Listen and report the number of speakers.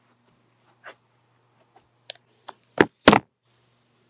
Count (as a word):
zero